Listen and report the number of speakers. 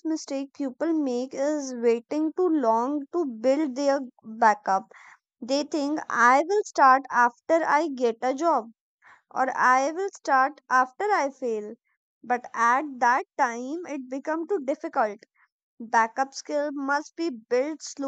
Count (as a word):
one